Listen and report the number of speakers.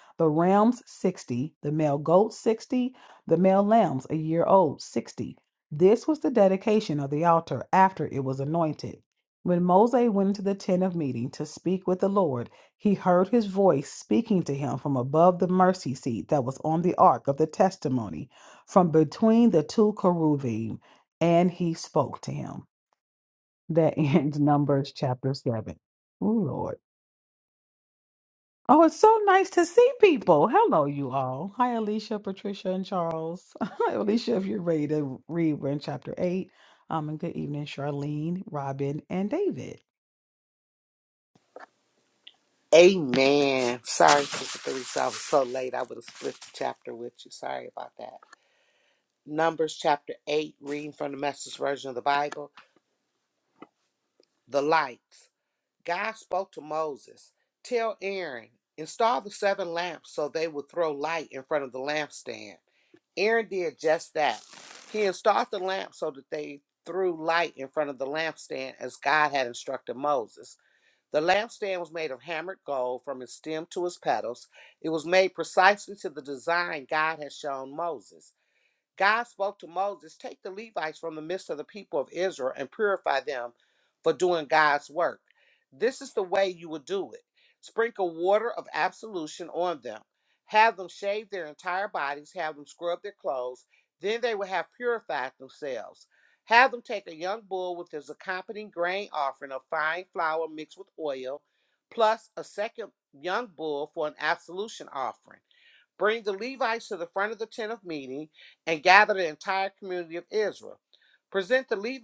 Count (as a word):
two